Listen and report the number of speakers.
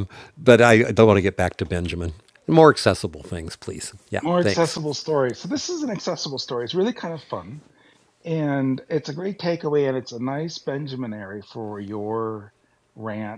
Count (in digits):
2